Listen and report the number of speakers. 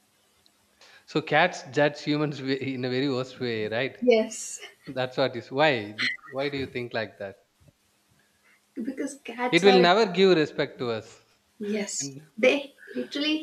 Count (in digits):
2